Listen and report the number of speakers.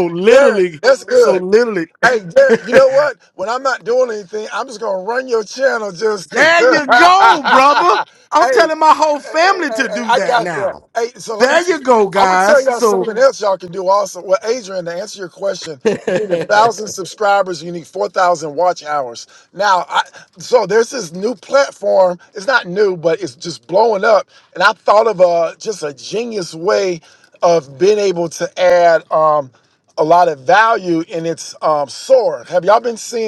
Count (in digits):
2